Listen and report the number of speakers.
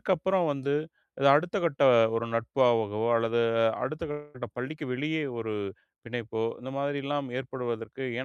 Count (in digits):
1